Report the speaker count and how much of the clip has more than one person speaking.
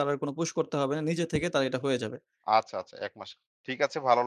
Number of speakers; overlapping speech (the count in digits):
2, no overlap